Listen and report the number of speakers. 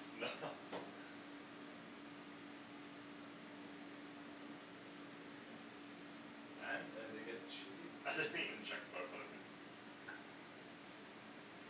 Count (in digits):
2